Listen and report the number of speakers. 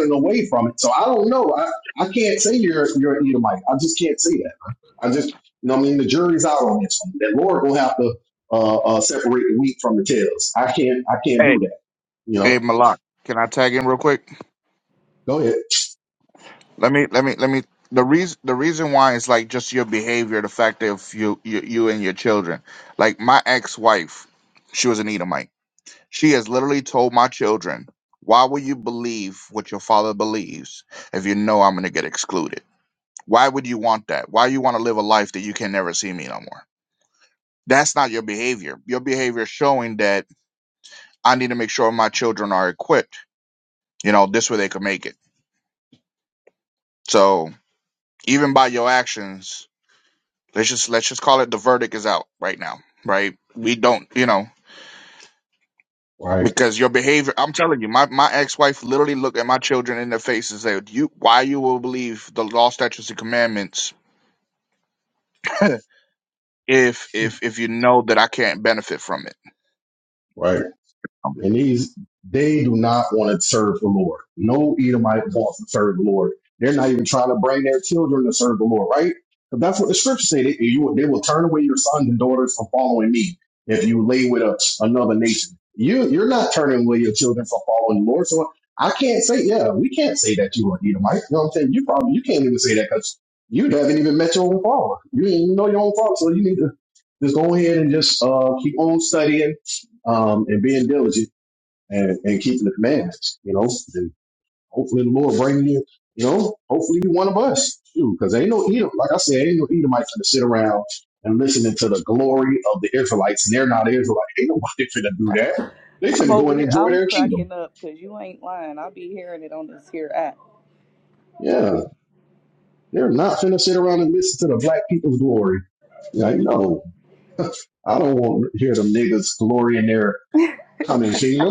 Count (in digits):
3